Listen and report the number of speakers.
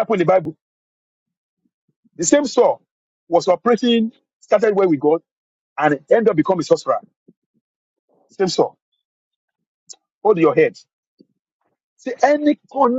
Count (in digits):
1